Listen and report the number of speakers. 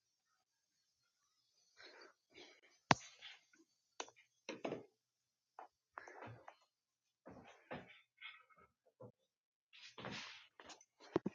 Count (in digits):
0